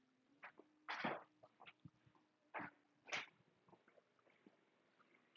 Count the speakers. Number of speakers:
0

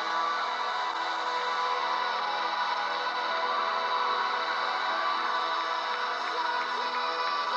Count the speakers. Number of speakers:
0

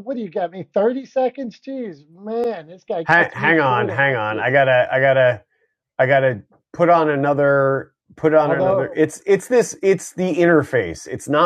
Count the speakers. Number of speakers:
2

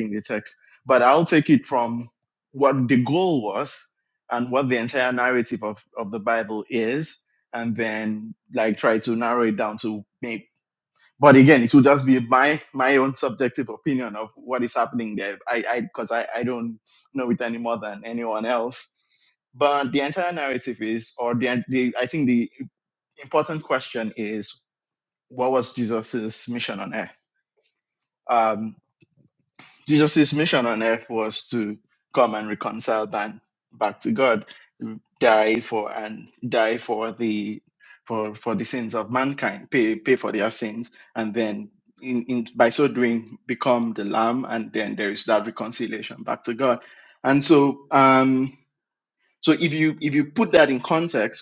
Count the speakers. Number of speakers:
1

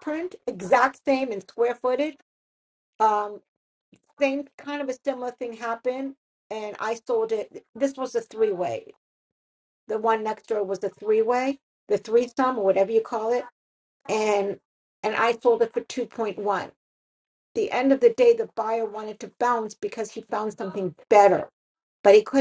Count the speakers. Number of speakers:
1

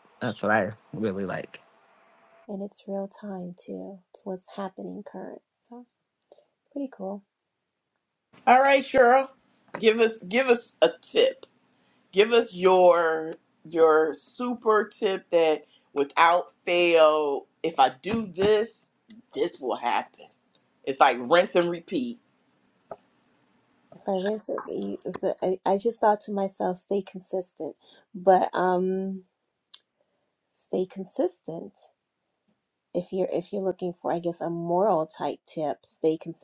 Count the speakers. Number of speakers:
3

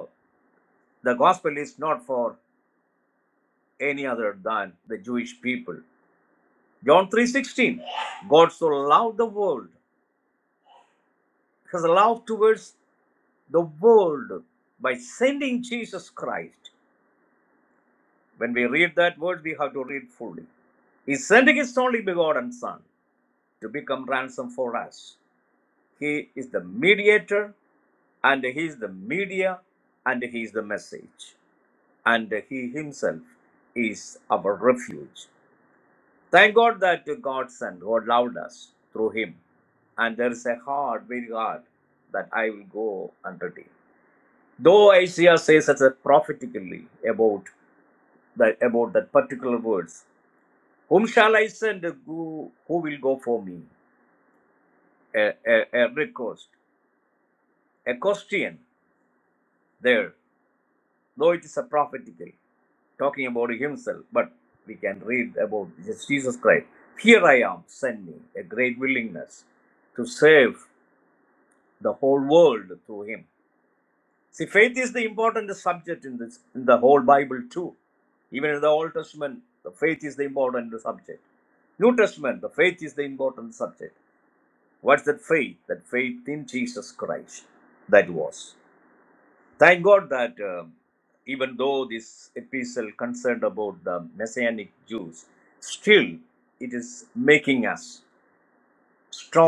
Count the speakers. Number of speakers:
1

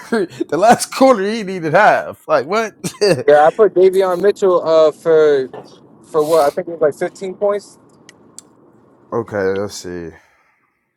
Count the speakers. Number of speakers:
2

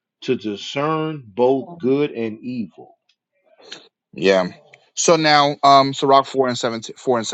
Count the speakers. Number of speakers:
2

